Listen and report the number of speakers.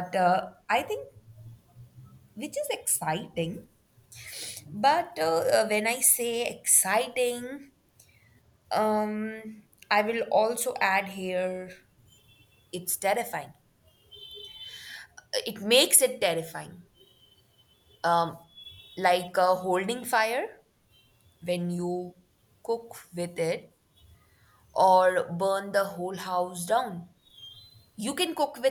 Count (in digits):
1